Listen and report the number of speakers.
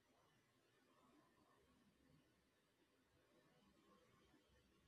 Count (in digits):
0